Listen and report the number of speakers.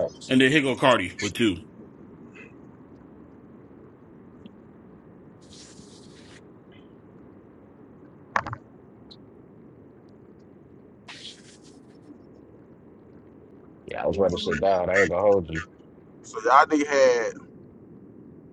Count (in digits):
3